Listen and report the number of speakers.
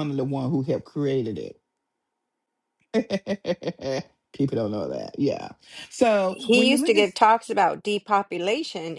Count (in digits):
2